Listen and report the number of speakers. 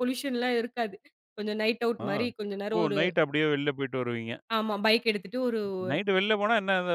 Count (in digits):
2